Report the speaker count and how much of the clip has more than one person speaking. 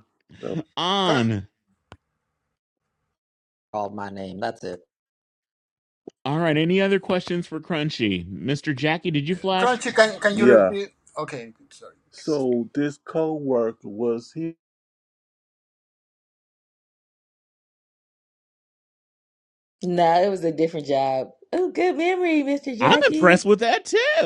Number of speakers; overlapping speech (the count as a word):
five, about 6%